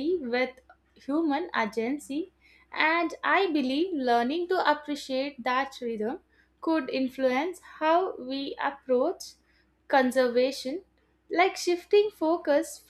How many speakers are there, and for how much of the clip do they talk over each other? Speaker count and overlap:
one, no overlap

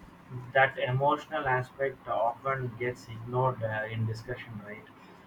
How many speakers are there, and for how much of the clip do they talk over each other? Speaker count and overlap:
one, no overlap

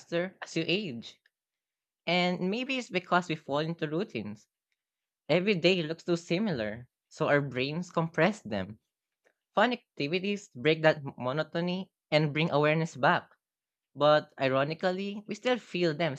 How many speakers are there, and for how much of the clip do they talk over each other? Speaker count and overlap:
one, no overlap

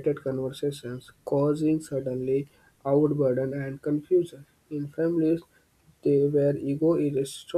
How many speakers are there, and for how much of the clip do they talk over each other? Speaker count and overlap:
one, no overlap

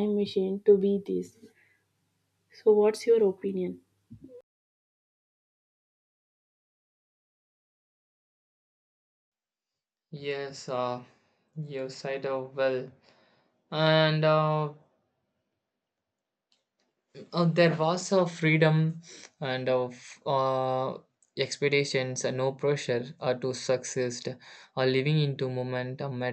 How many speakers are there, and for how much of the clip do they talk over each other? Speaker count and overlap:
two, no overlap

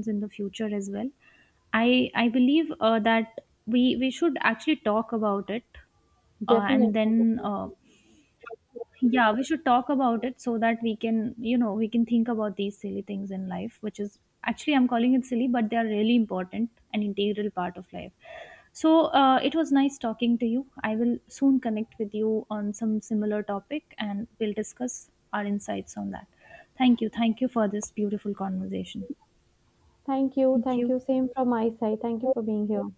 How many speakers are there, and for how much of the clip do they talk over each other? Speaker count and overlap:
two, about 3%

